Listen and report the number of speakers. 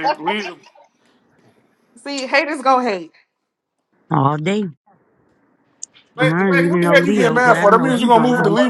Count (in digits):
3